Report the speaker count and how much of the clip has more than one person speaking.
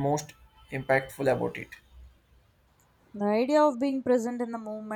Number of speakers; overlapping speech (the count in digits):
2, no overlap